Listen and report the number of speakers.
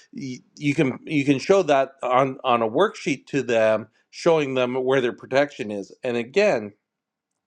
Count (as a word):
one